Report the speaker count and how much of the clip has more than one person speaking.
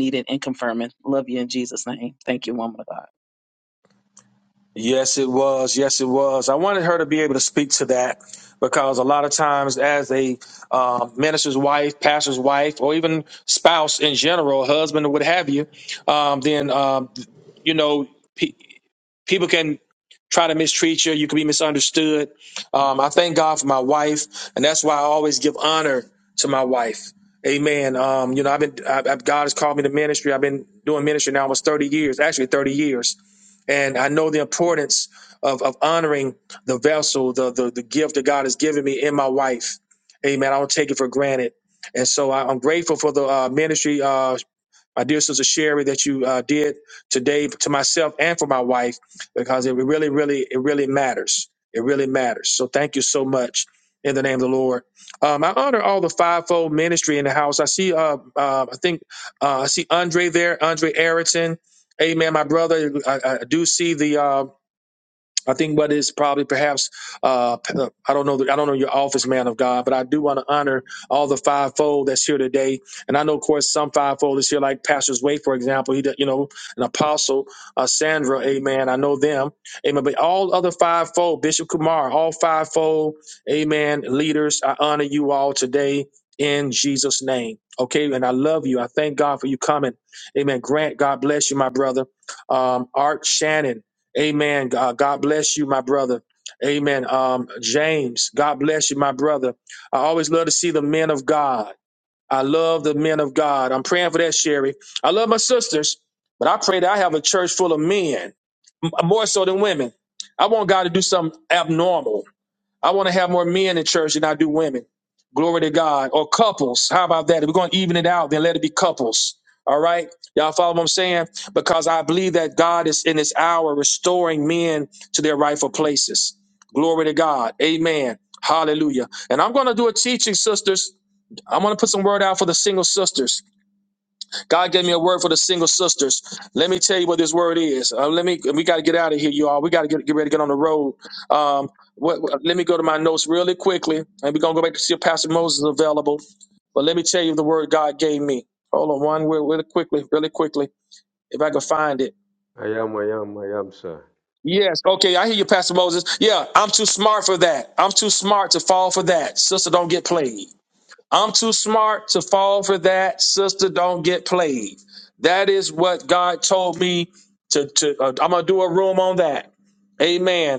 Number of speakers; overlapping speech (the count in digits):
3, no overlap